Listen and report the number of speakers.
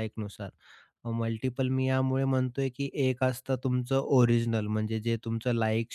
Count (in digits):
1